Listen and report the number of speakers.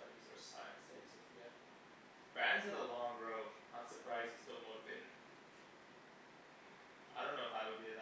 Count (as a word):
one